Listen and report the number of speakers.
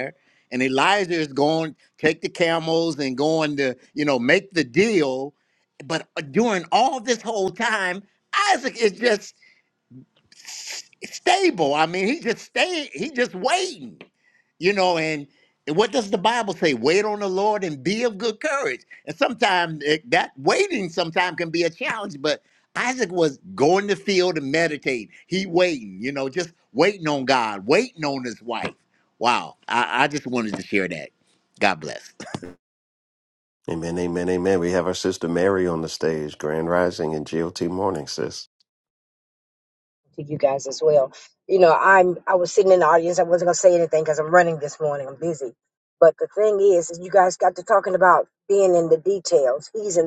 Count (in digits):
3